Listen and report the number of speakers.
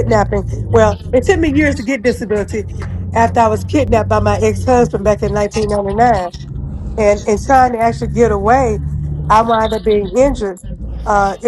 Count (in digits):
1